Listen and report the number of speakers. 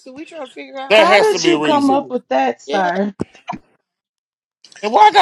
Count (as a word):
three